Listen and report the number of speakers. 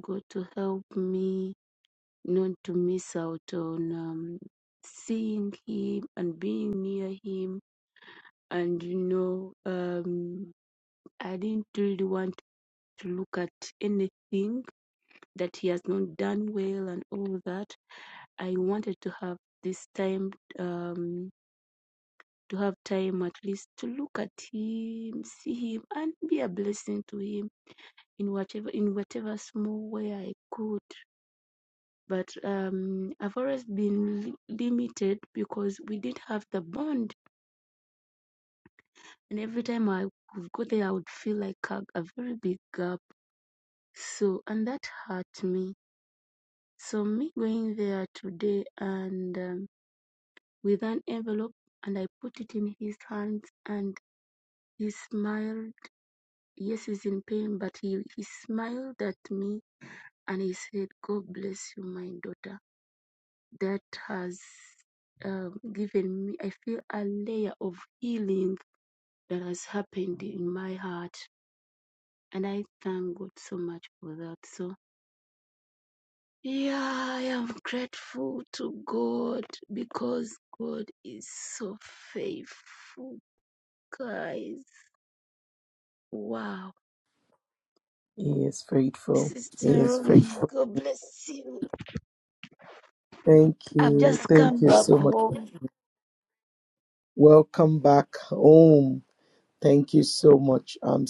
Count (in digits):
2